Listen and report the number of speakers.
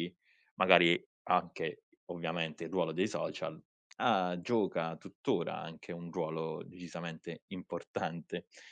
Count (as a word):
one